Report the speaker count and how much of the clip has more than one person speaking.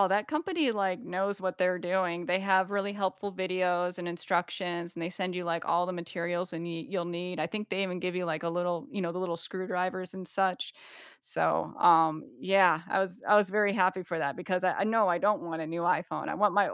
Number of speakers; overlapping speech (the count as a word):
one, no overlap